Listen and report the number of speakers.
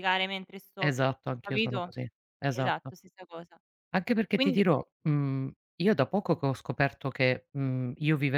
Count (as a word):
two